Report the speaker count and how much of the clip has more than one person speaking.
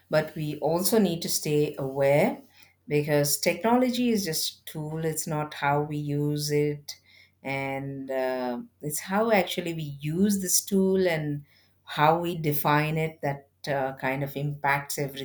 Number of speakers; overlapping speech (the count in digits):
1, no overlap